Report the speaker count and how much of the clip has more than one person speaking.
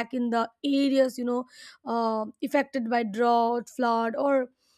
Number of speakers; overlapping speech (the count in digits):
1, no overlap